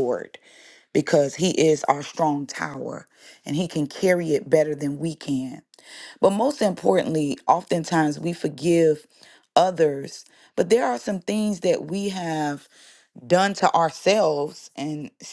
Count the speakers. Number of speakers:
one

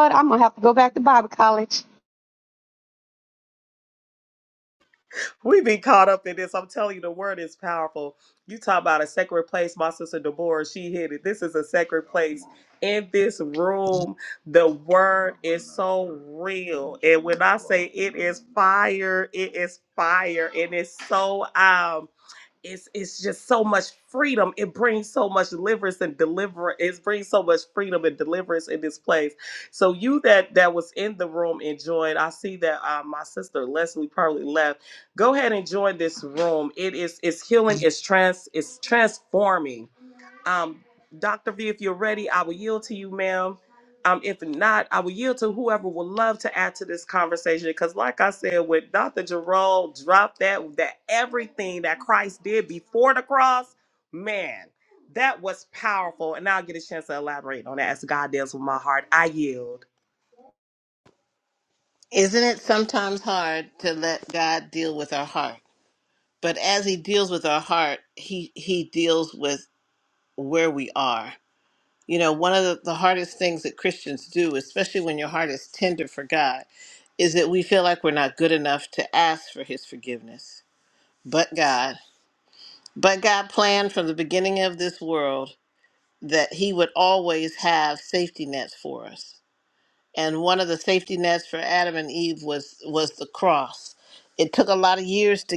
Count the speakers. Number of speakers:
three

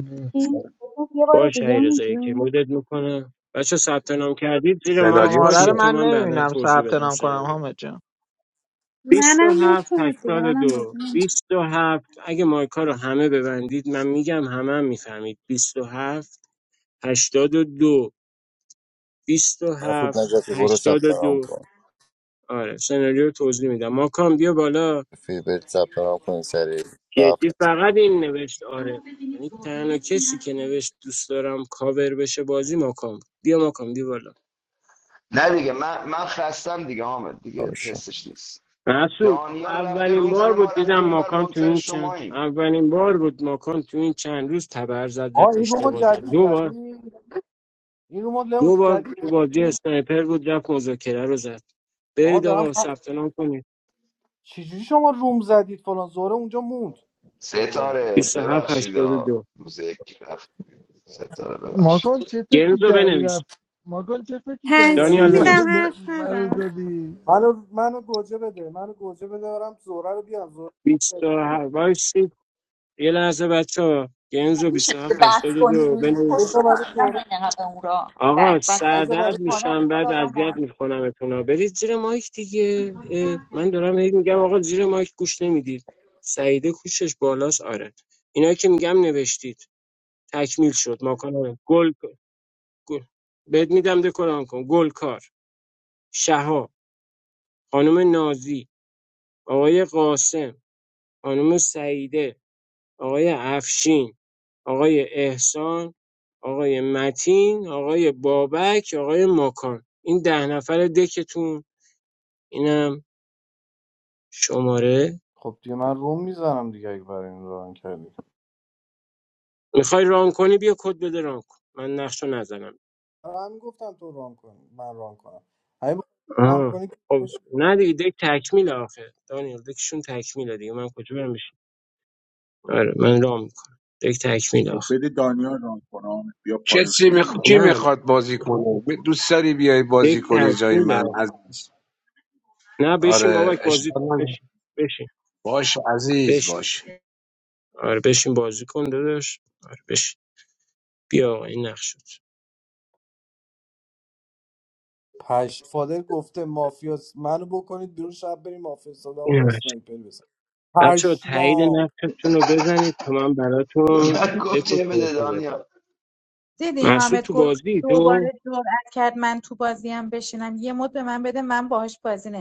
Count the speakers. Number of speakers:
twelve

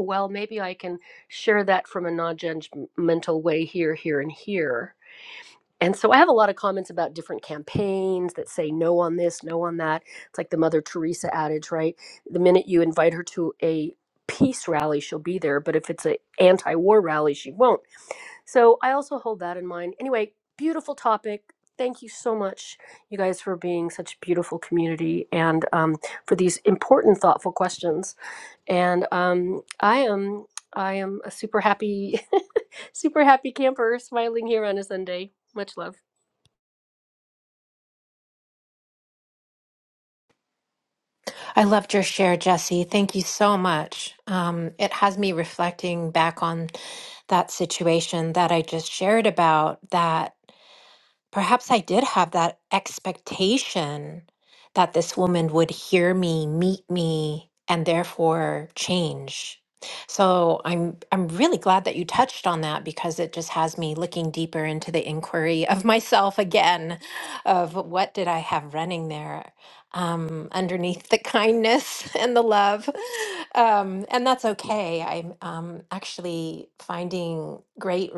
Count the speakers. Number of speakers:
two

